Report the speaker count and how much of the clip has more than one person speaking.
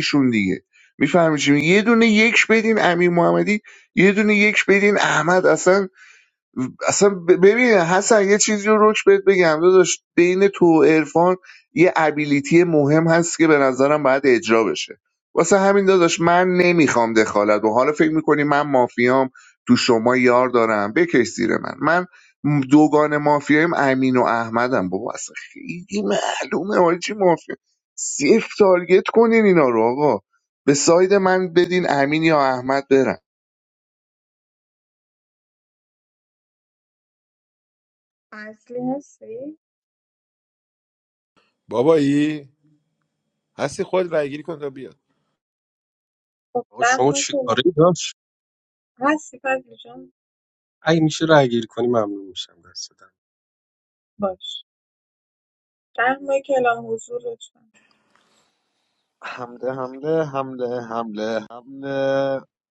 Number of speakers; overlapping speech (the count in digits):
5, about 1%